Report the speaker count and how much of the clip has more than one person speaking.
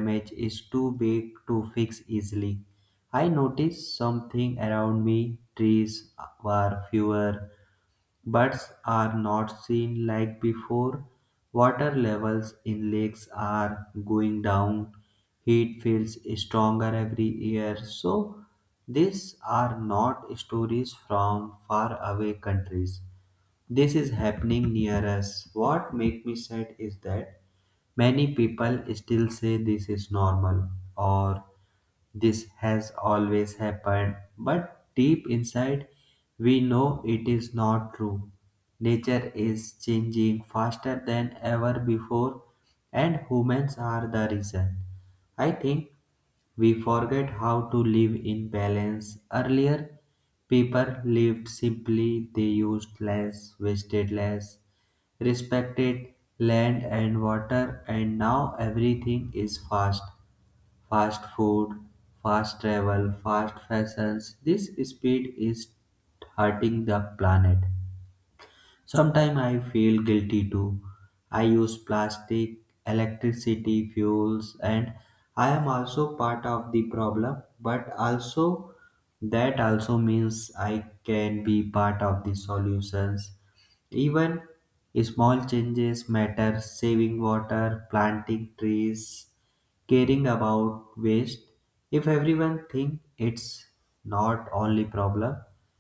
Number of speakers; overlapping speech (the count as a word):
one, no overlap